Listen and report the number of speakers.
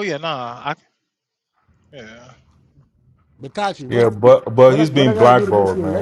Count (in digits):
3